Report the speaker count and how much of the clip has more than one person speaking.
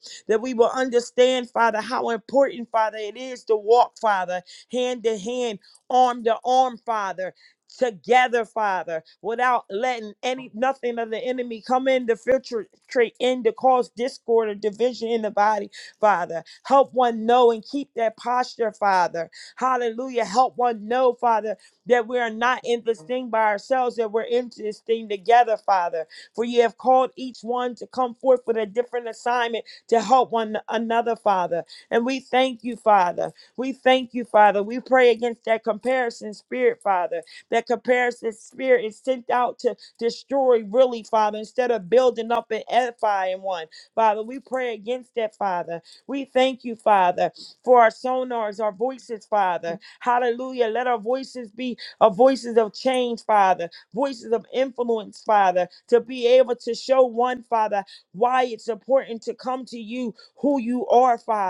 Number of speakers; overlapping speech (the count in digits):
1, no overlap